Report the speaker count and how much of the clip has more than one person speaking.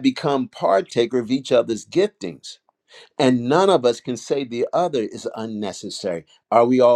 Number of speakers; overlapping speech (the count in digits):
1, no overlap